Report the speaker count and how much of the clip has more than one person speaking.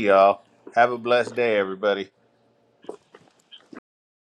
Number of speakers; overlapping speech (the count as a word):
one, no overlap